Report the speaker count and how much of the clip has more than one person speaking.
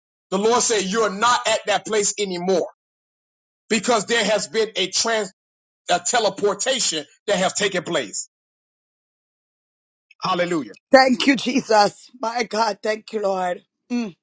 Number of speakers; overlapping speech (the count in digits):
2, no overlap